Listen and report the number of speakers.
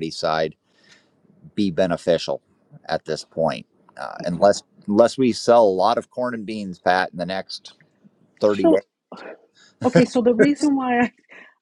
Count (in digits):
2